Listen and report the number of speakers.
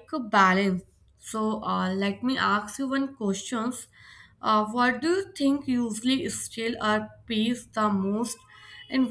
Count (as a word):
one